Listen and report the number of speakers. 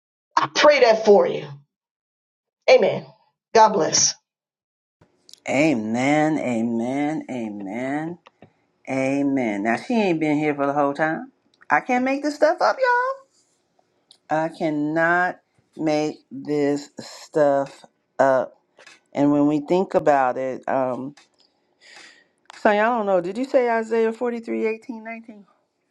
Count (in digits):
2